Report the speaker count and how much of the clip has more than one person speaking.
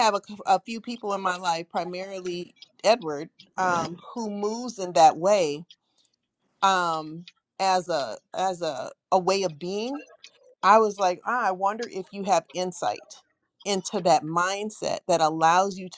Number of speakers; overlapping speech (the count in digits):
1, no overlap